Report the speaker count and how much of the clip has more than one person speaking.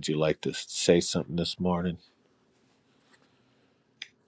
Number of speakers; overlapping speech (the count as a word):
one, no overlap